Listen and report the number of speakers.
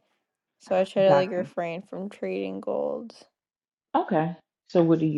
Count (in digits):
2